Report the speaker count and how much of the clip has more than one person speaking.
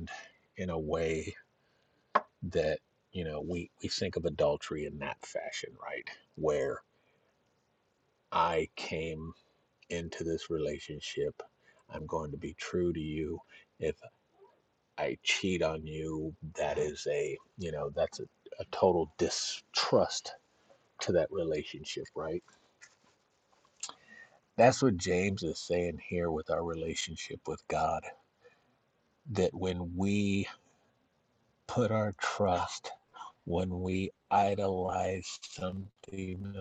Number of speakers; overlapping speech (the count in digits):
1, no overlap